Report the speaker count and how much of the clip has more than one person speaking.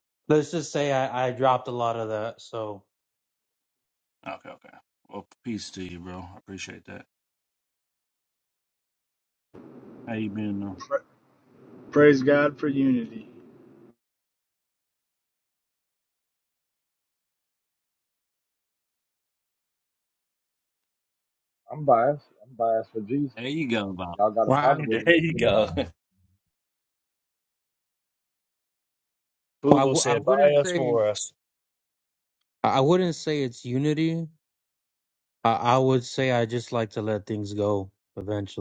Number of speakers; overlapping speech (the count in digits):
4, about 6%